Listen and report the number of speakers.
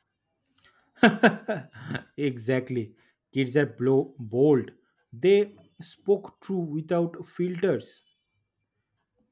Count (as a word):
one